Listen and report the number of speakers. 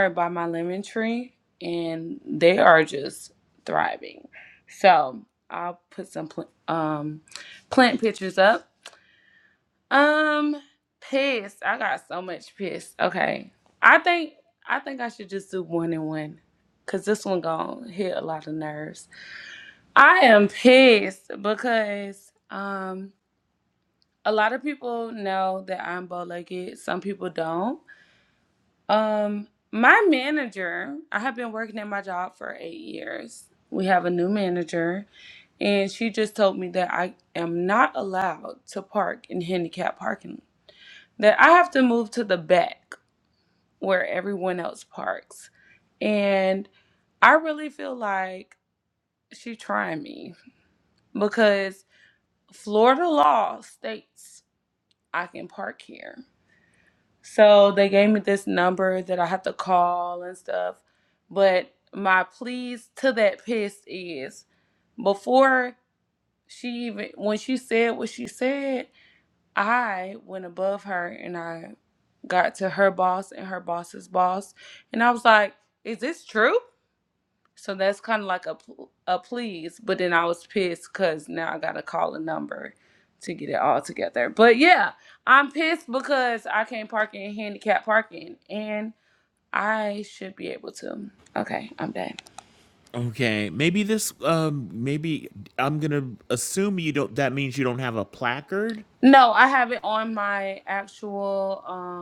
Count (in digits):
2